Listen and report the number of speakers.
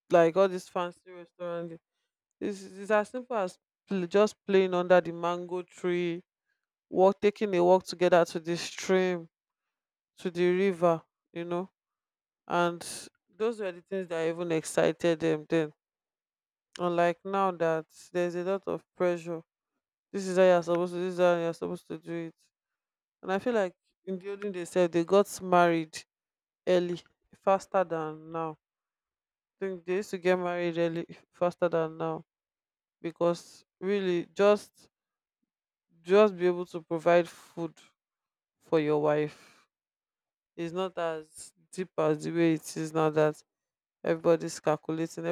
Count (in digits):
1